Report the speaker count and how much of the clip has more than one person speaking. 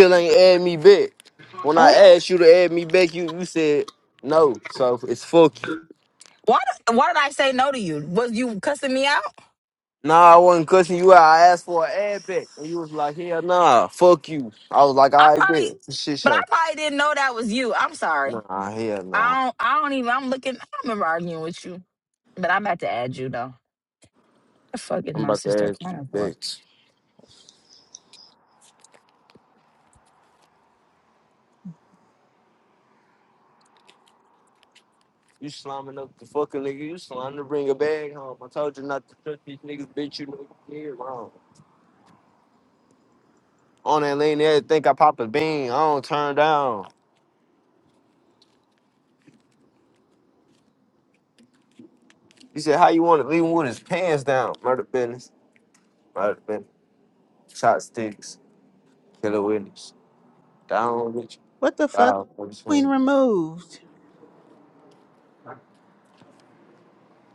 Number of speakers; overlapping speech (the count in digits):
3, about 4%